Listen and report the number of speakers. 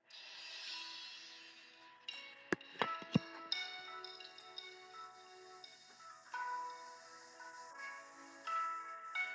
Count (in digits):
0